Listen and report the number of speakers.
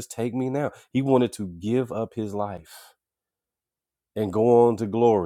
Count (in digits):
1